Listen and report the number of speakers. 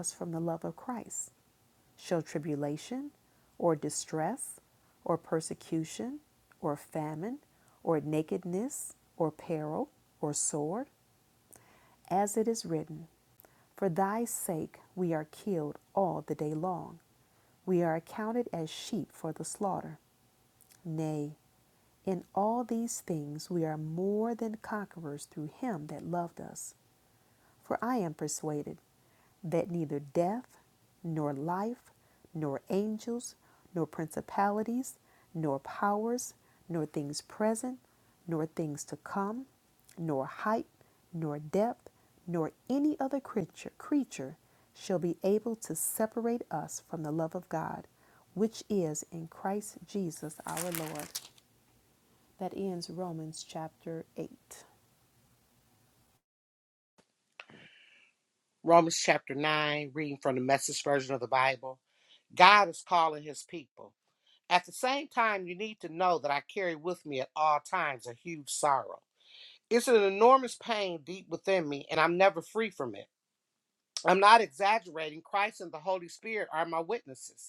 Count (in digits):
2